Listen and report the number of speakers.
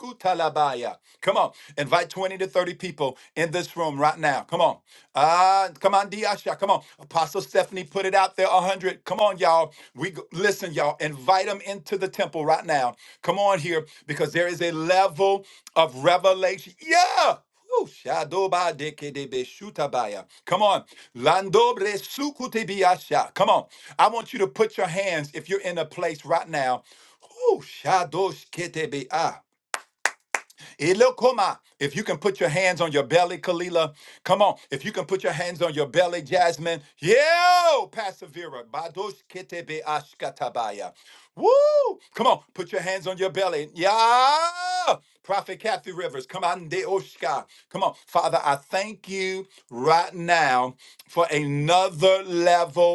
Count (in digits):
1